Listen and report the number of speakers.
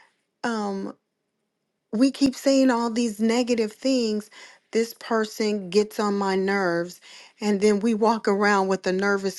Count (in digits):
1